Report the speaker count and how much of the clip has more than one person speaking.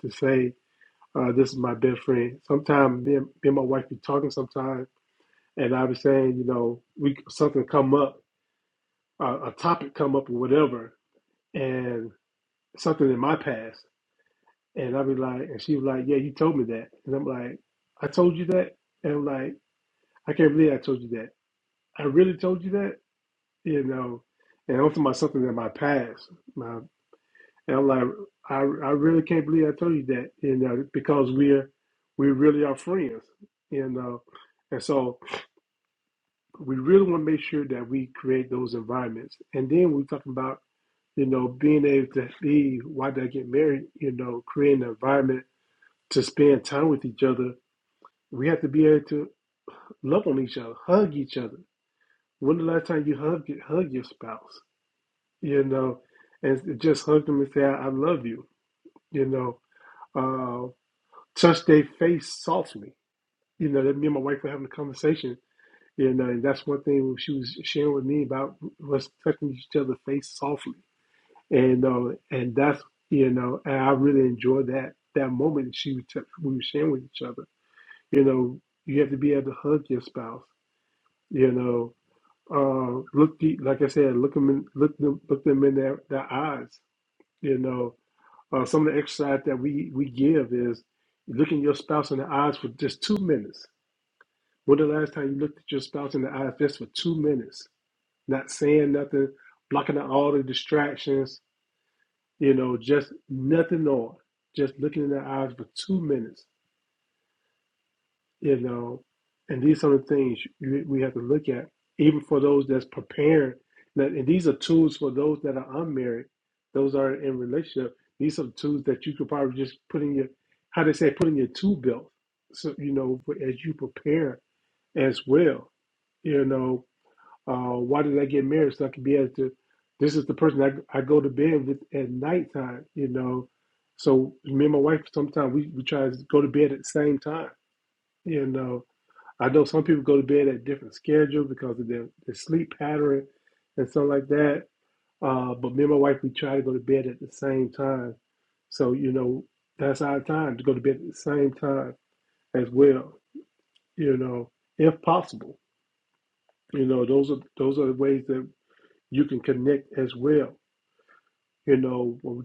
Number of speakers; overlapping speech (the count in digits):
1, no overlap